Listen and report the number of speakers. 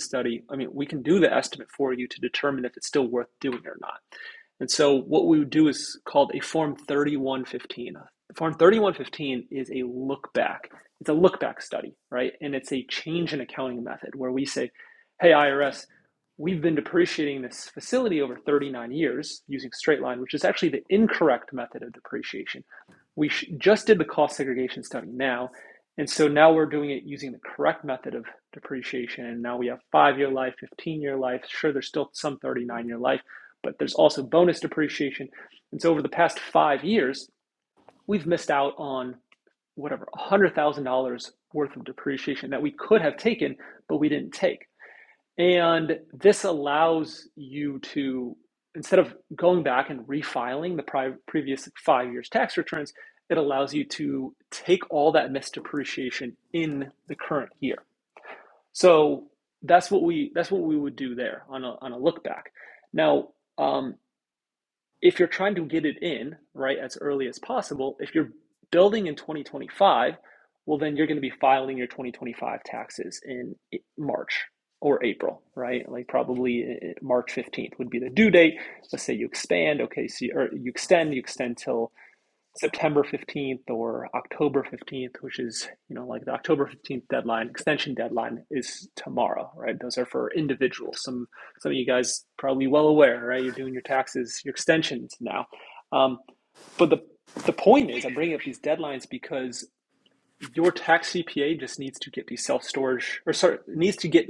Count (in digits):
1